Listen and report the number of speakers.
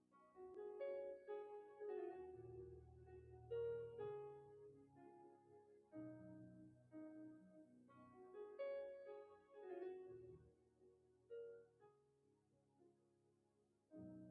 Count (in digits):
0